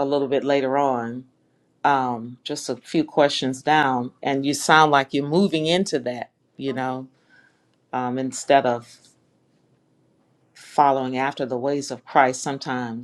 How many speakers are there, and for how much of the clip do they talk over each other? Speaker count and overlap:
one, no overlap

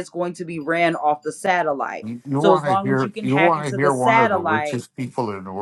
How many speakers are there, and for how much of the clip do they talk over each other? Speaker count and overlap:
two, about 43%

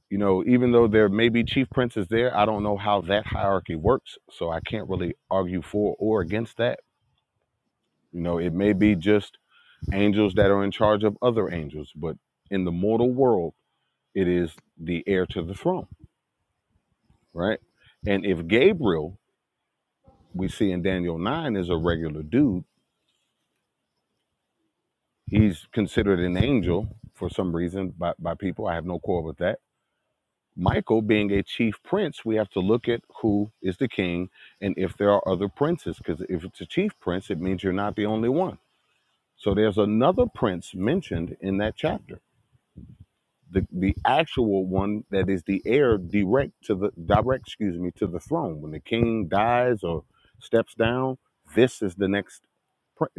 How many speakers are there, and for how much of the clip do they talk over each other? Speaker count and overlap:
one, no overlap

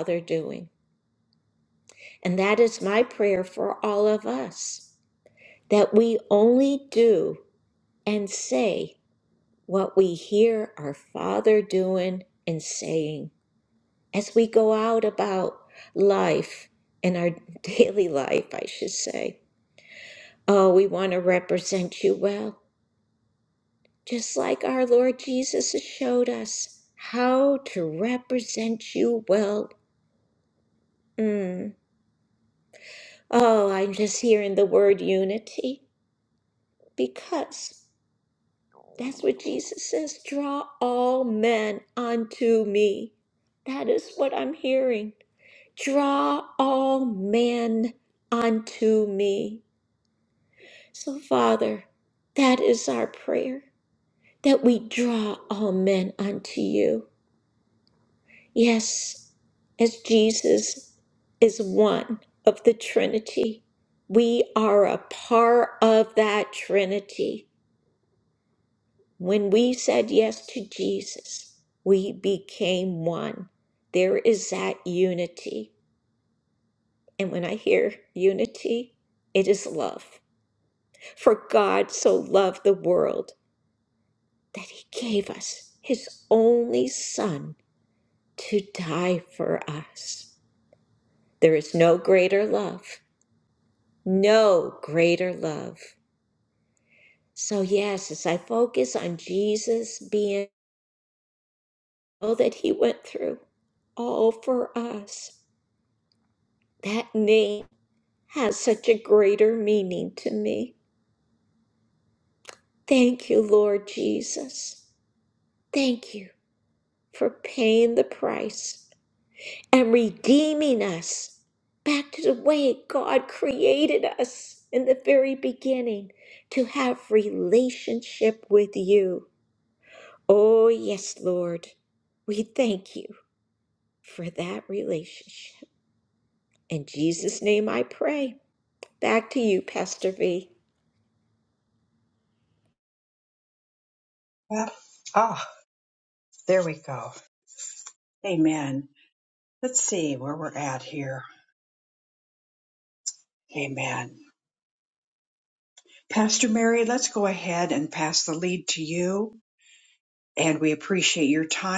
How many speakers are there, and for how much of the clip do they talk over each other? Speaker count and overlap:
two, no overlap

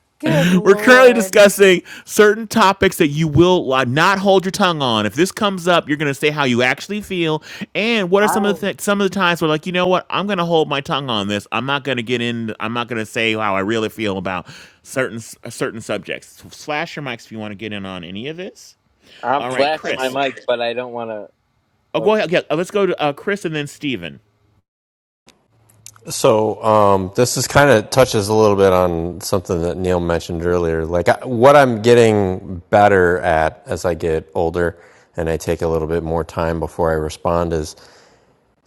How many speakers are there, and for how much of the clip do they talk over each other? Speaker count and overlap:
four, about 5%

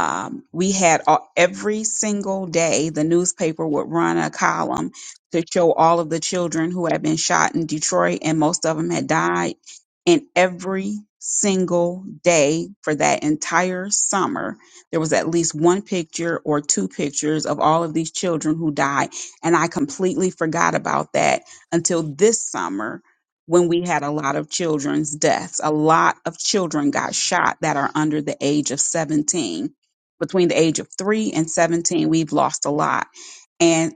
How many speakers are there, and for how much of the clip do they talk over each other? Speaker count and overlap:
one, no overlap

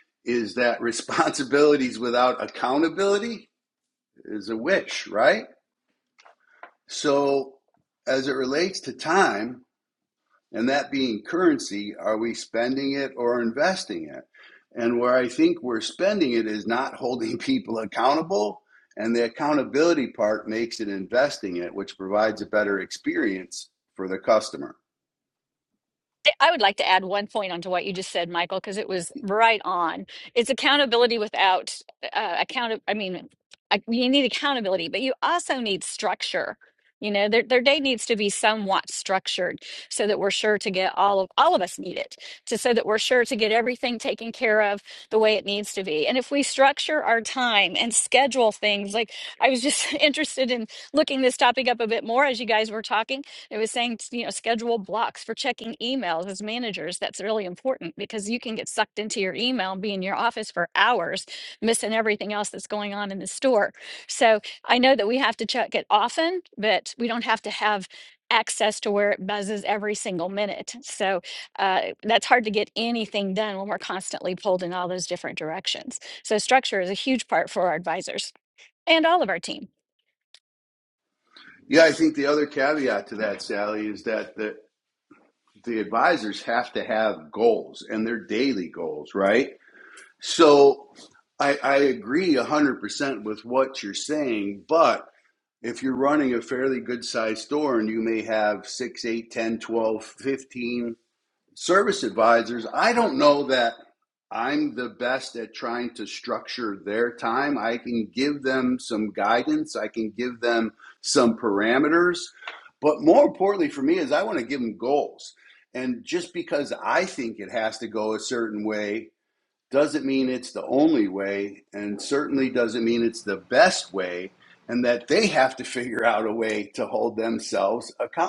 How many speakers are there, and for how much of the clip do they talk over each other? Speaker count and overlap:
two, no overlap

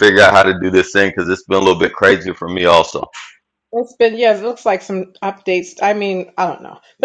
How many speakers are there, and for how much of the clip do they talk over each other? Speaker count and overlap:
two, no overlap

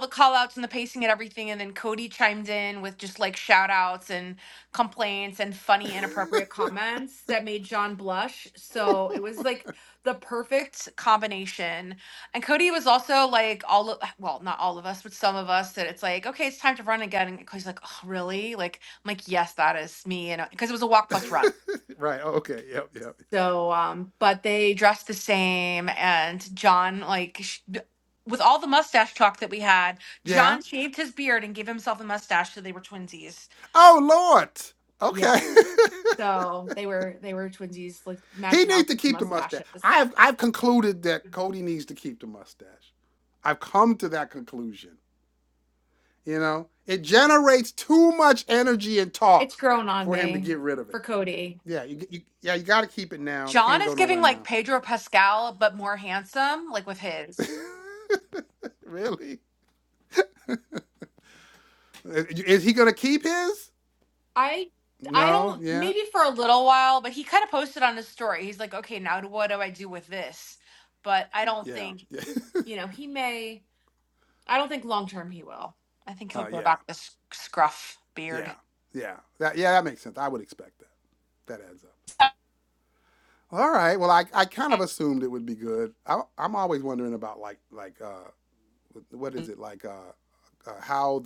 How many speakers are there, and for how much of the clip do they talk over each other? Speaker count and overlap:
two, about 6%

